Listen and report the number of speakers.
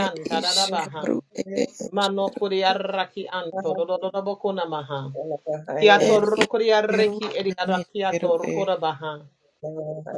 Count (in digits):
3